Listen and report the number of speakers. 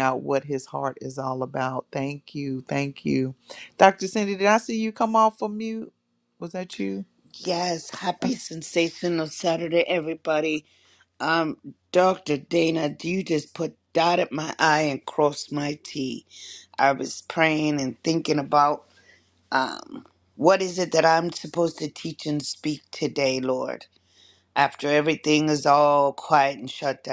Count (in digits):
2